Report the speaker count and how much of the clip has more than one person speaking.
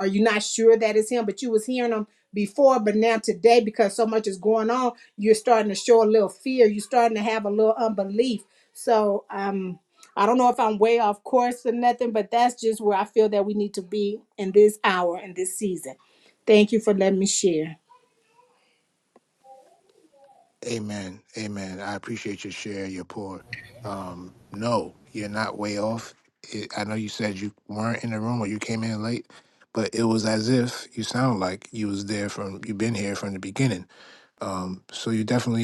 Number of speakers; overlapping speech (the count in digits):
2, no overlap